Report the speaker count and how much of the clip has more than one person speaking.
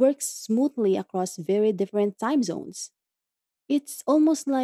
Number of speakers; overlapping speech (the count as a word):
one, no overlap